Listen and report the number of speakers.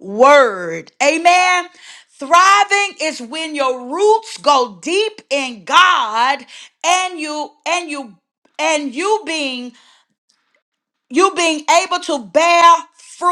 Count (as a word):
one